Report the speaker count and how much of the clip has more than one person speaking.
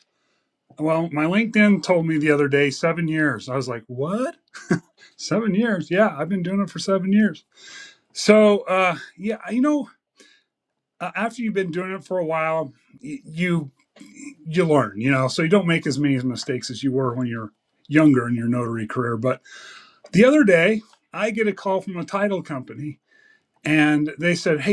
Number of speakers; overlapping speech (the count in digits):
1, no overlap